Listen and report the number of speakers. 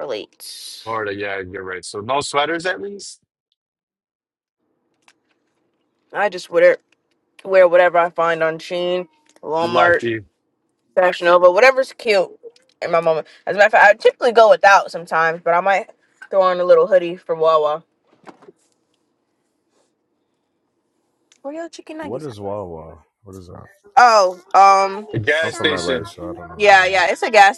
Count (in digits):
3